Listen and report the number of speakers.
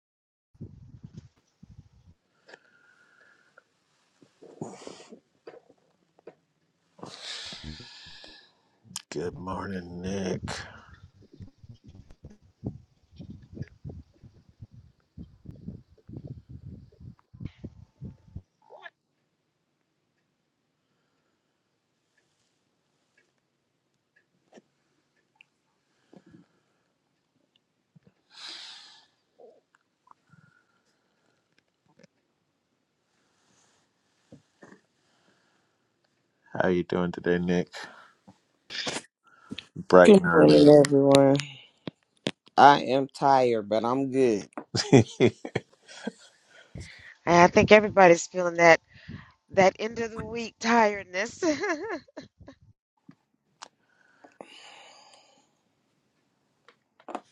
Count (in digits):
3